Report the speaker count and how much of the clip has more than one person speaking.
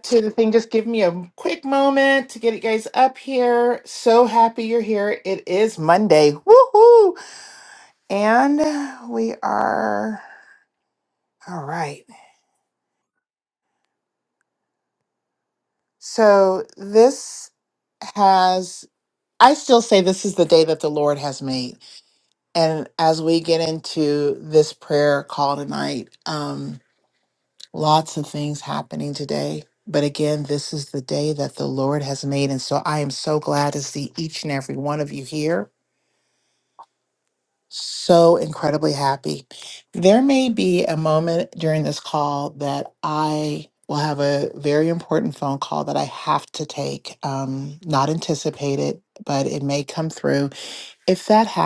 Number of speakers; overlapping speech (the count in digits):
1, no overlap